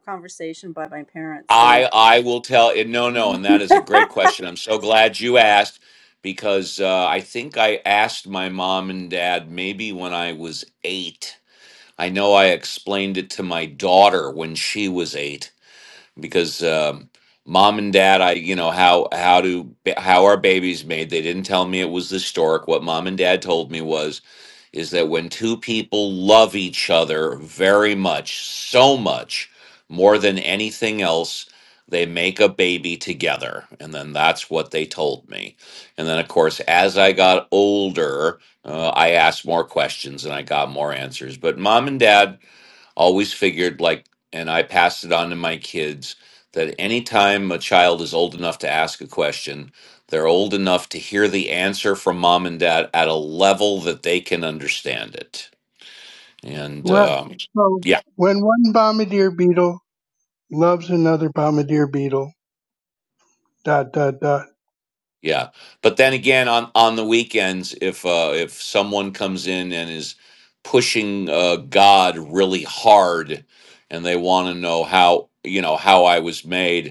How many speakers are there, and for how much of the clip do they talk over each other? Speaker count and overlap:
3, about 1%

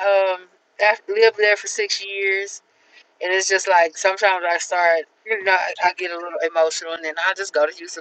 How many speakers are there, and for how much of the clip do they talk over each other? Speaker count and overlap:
1, no overlap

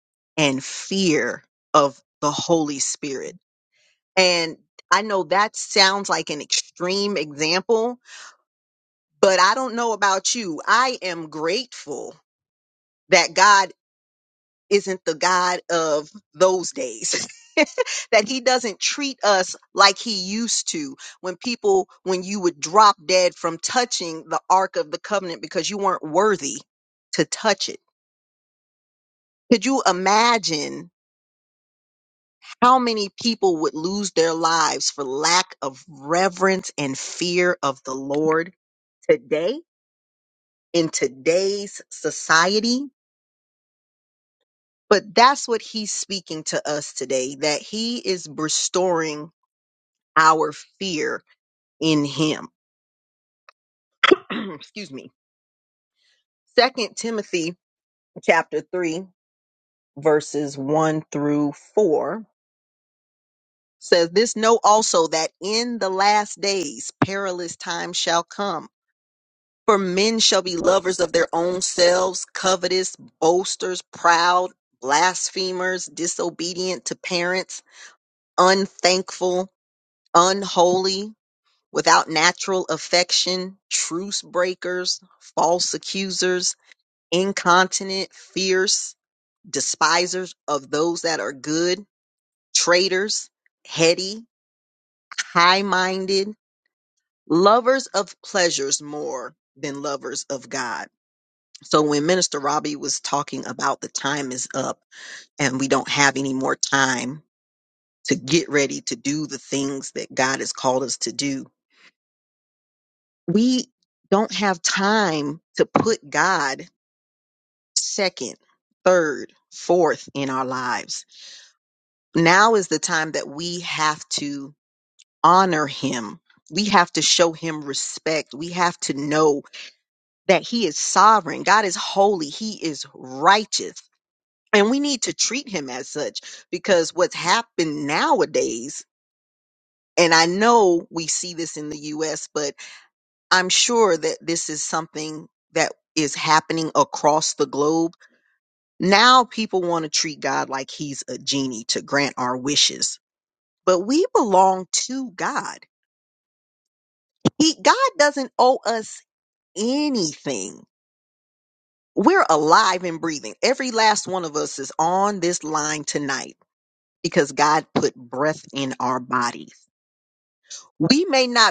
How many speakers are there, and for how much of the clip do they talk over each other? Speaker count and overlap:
1, no overlap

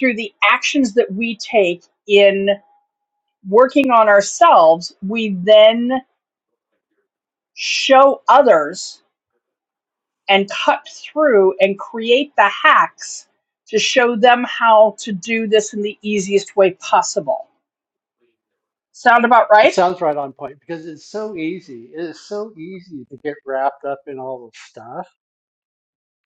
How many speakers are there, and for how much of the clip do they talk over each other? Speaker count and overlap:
2, about 1%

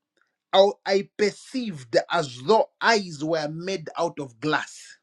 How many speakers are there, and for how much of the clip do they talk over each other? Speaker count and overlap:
1, no overlap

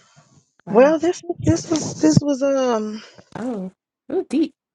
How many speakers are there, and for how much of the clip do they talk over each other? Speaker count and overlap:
2, about 5%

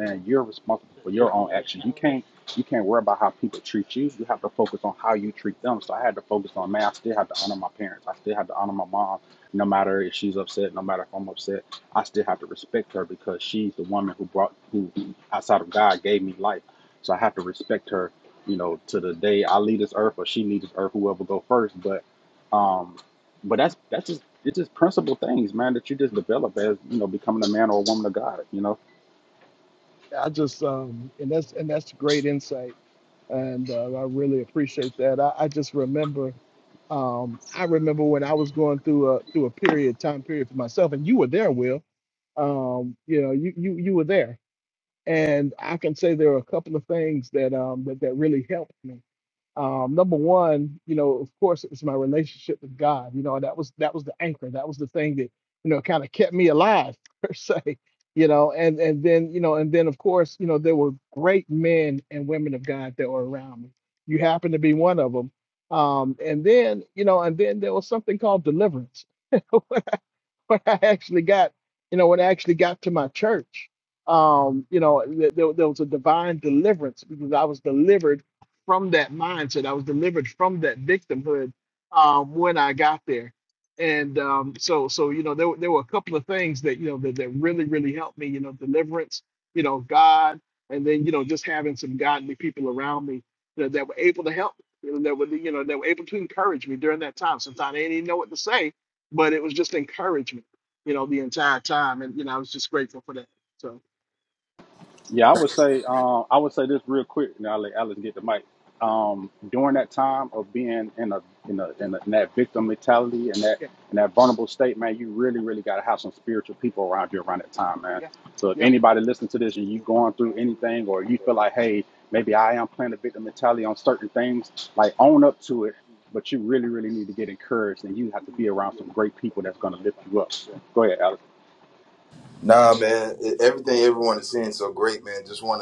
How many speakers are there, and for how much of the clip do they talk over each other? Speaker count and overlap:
3, under 1%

